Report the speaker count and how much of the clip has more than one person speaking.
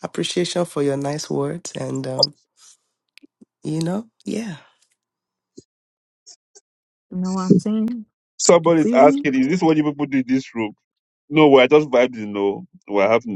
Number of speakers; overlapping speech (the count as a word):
three, about 5%